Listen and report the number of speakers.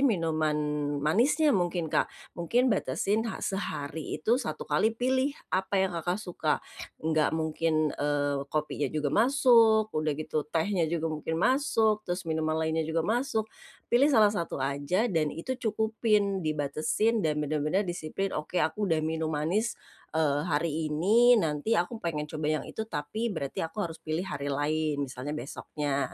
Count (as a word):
one